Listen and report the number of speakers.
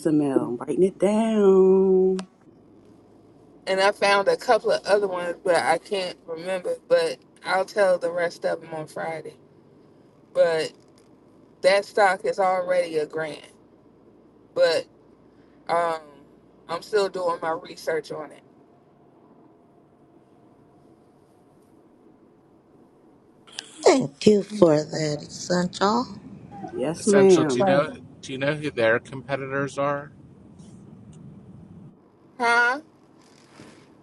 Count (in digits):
4